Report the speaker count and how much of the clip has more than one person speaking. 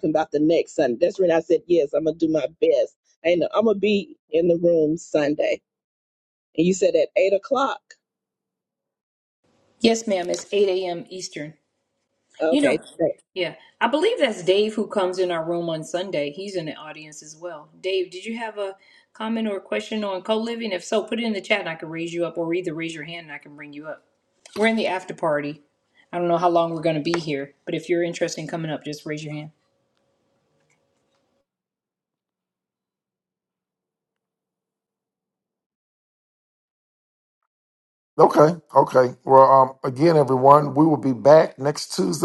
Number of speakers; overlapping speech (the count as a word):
three, about 1%